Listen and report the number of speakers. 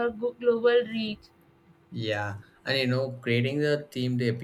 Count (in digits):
2